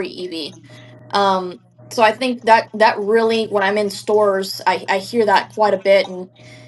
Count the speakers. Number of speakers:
1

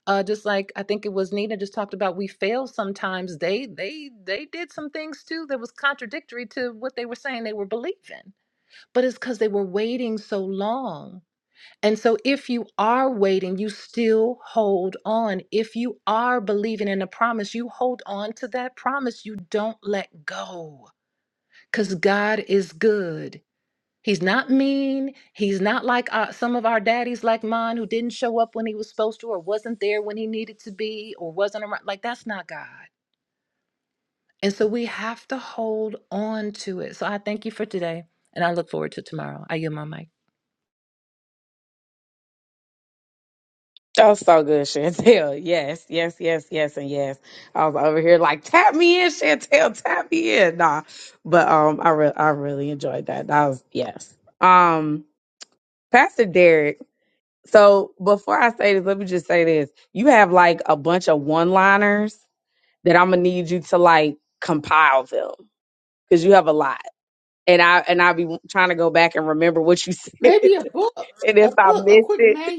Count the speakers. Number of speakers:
3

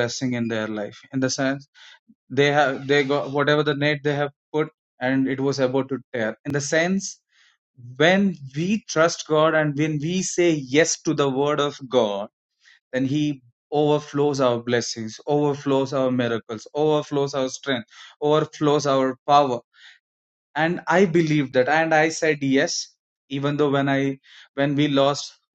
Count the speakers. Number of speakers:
1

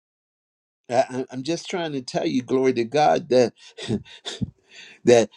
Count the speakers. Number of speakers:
1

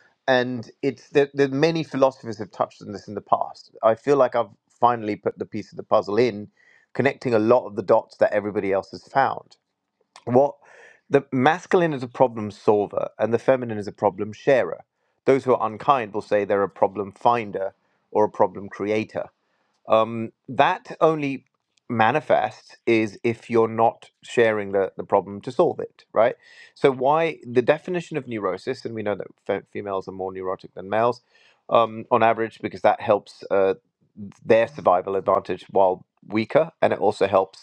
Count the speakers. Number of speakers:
1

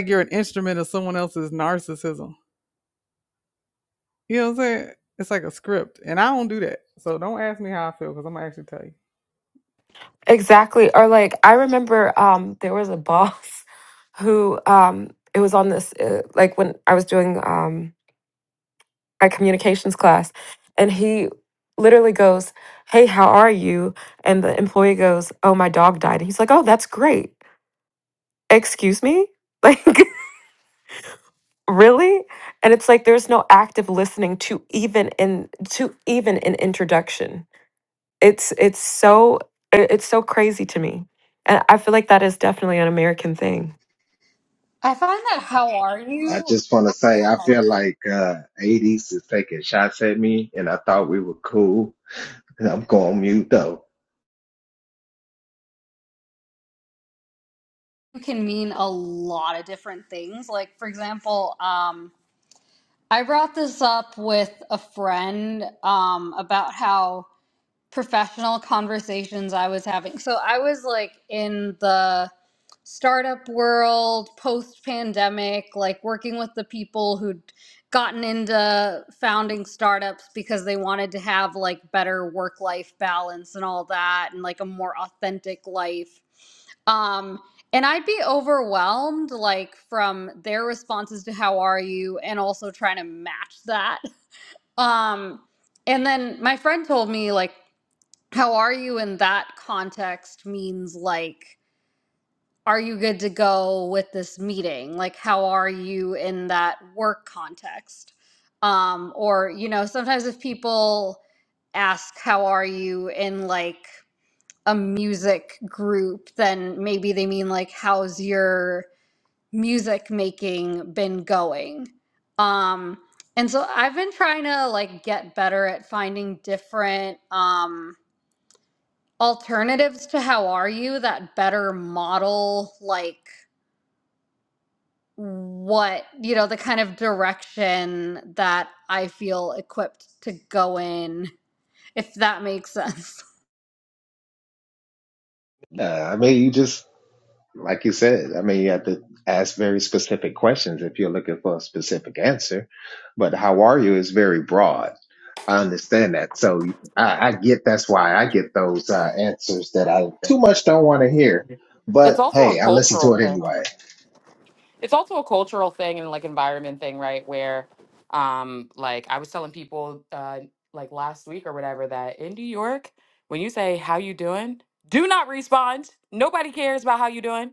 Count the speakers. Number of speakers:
5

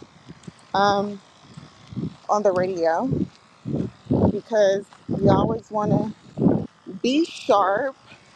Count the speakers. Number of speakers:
1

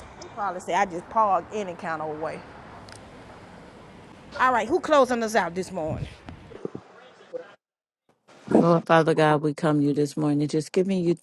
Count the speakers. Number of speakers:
2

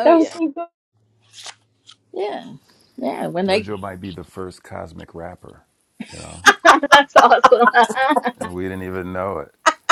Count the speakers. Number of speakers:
3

